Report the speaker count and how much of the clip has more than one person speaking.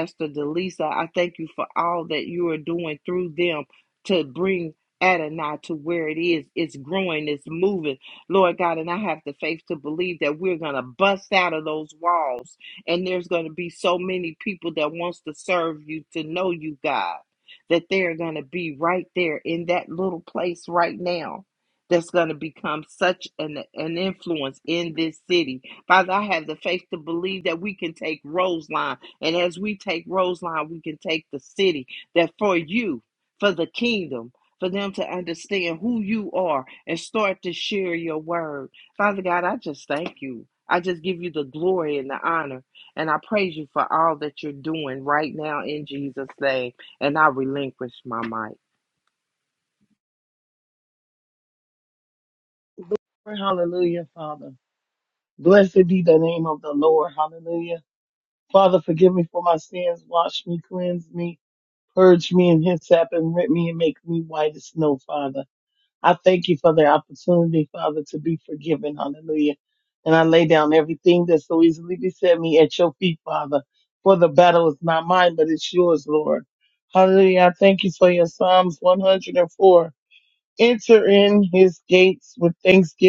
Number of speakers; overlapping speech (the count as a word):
two, no overlap